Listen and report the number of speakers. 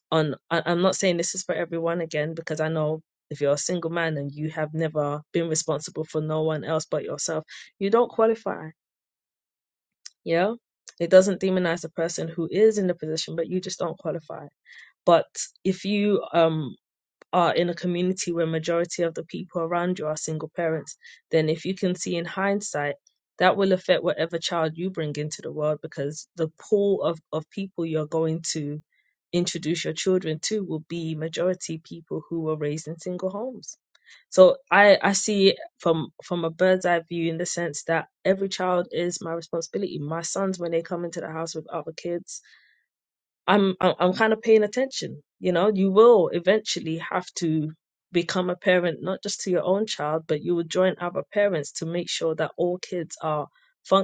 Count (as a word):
one